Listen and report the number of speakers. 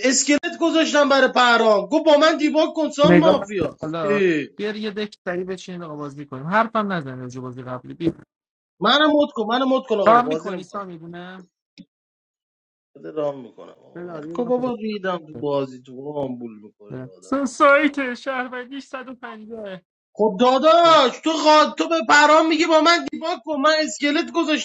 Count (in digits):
2